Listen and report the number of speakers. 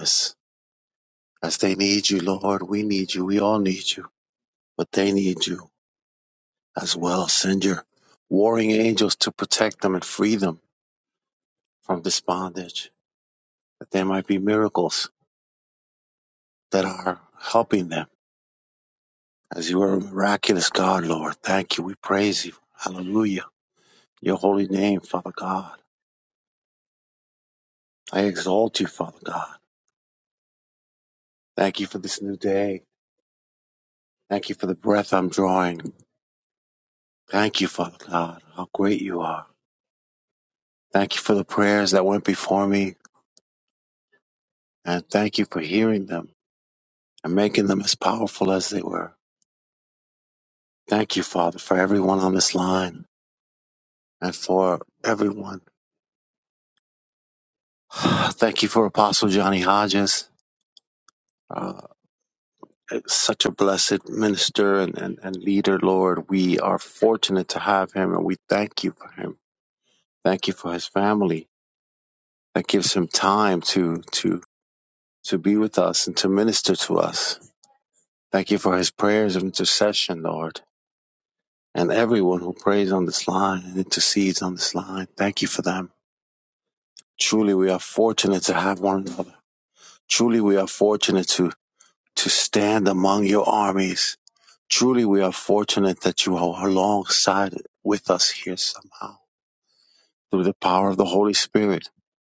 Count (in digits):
1